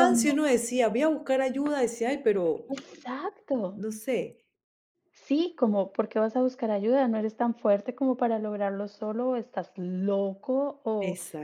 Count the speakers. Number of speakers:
2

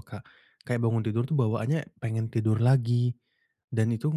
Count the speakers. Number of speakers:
1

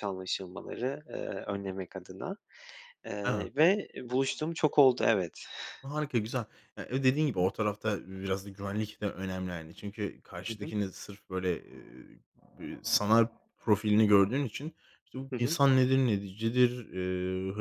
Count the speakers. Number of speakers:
2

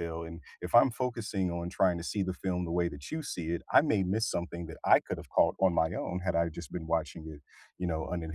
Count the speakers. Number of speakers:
1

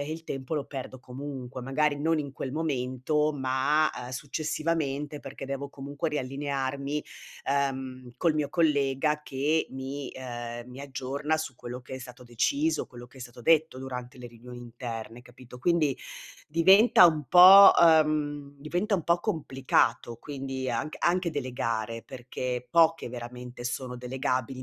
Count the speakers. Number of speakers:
1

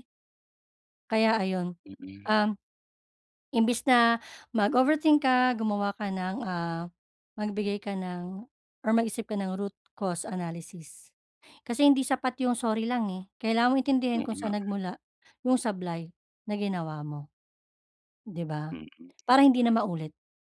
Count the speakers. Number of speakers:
2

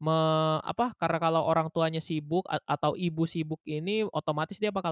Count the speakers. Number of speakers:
1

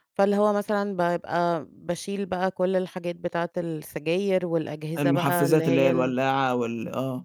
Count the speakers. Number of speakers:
2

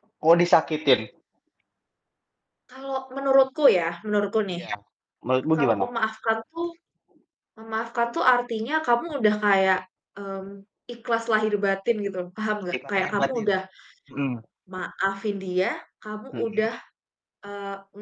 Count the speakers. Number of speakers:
2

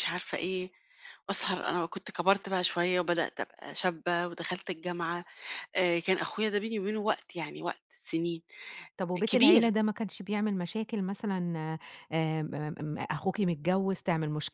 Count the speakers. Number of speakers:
2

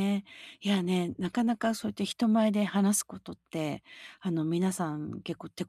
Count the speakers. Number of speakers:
1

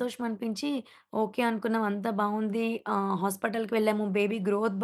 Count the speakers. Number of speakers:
1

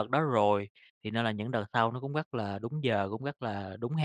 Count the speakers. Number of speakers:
1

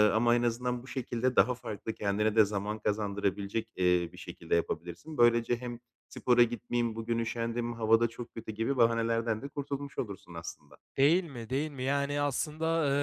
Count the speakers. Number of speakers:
2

